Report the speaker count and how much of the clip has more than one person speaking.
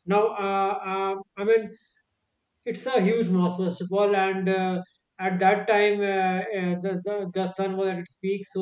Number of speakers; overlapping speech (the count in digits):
1, no overlap